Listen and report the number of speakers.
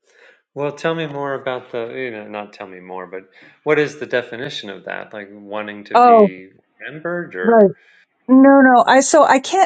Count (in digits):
2